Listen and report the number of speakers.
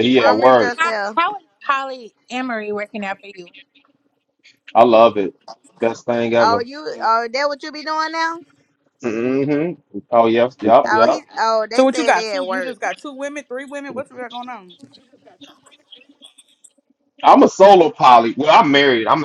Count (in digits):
4